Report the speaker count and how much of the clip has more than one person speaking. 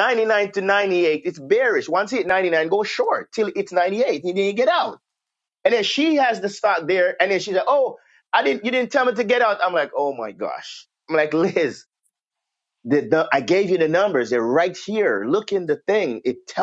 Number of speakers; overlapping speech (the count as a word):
one, no overlap